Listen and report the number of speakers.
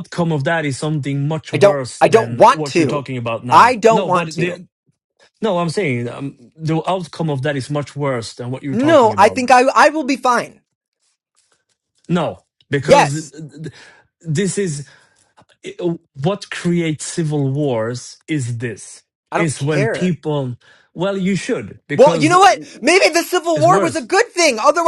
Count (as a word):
two